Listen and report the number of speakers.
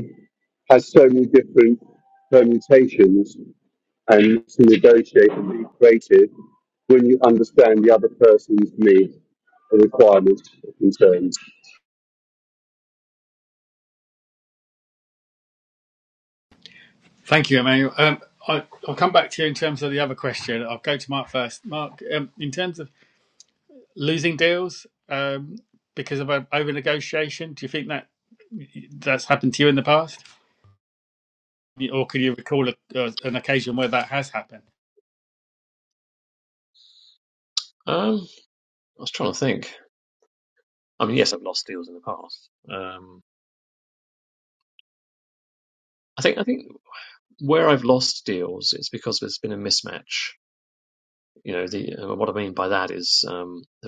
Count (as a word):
three